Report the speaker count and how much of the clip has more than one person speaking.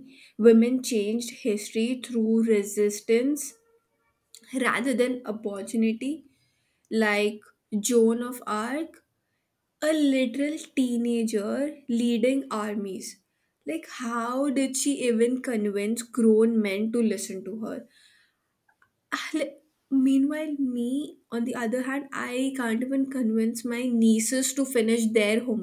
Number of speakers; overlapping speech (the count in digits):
1, no overlap